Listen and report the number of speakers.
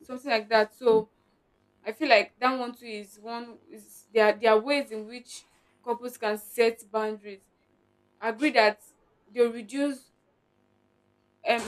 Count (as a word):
one